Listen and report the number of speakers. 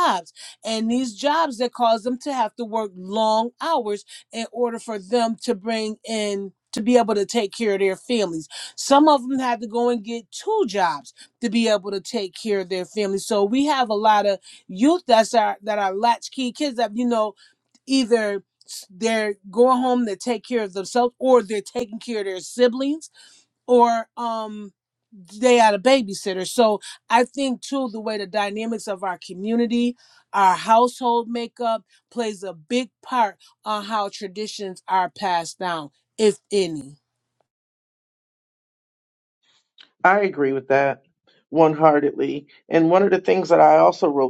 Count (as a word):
two